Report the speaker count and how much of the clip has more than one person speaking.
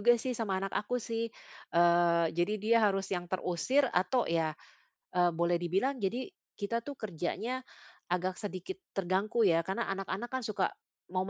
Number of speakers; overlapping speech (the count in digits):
1, no overlap